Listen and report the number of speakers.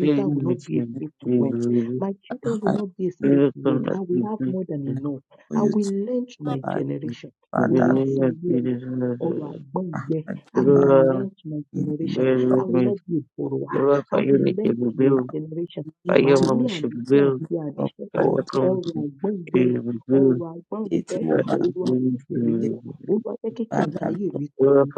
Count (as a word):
three